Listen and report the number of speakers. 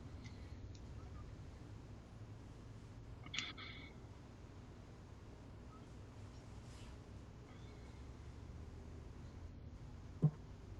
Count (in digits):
0